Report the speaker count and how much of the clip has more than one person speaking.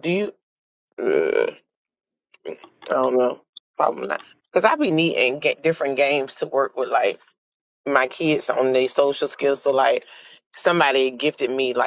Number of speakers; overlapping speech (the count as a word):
one, no overlap